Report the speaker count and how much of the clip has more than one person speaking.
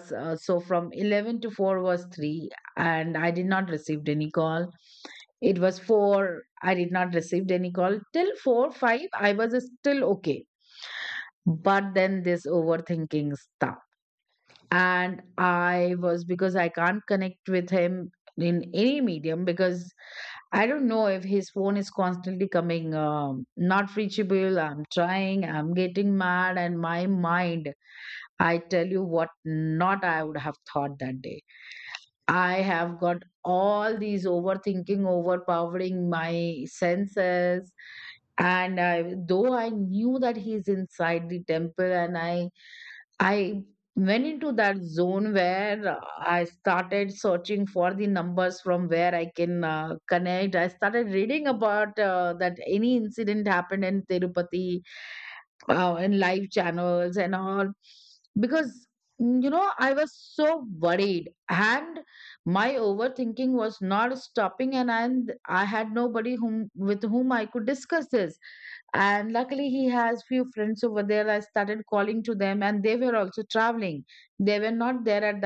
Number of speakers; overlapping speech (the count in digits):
1, no overlap